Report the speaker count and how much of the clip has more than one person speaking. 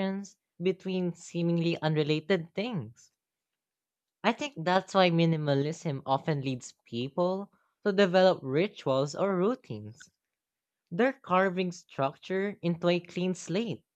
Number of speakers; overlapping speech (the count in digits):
1, no overlap